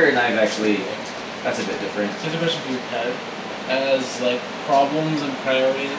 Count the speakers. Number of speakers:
2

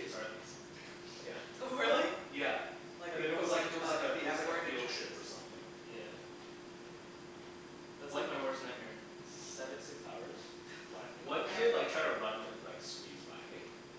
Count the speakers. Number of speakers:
3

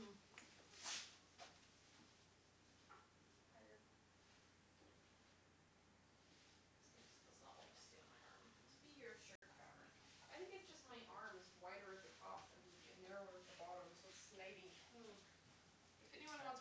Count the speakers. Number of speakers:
2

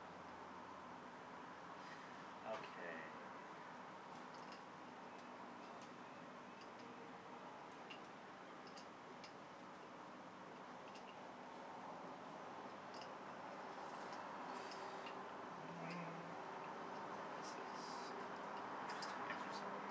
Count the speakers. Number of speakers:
1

